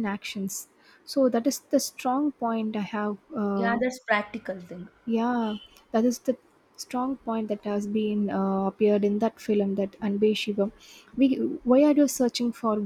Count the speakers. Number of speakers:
2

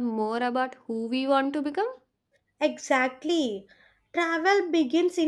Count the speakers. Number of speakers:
2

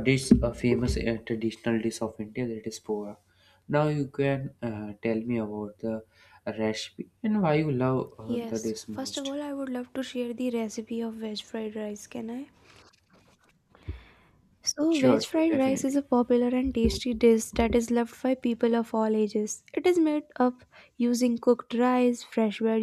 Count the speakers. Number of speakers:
2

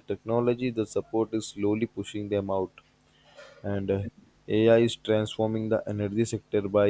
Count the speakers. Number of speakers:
1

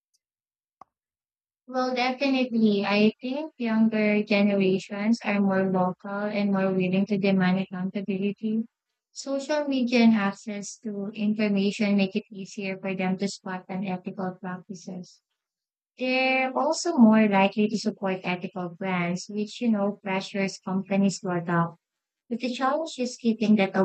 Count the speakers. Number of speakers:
1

